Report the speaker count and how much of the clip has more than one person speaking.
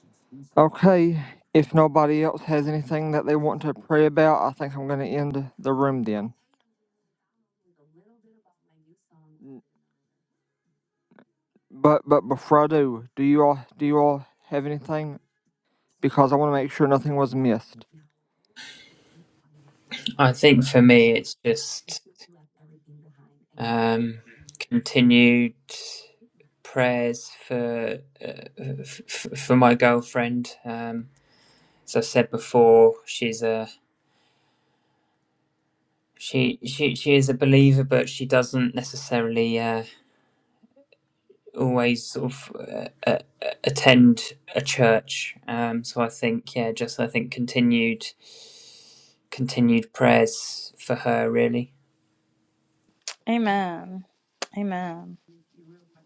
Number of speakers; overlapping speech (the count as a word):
three, no overlap